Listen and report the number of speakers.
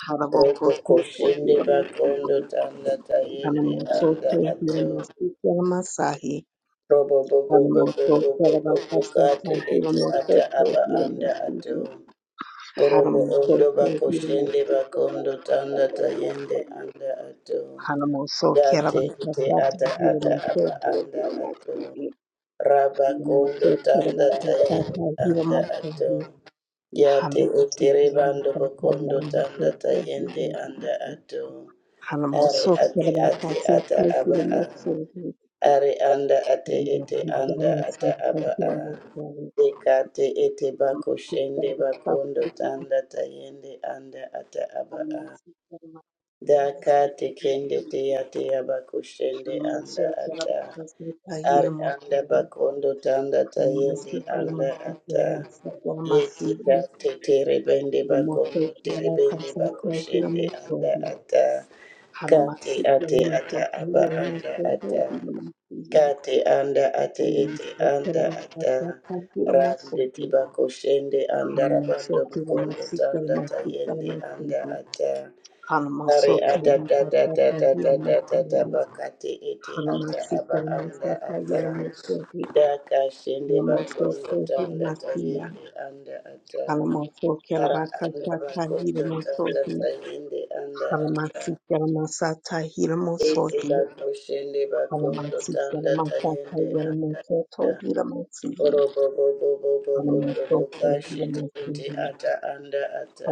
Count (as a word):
two